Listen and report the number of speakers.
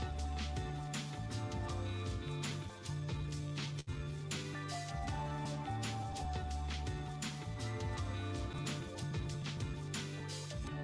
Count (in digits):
0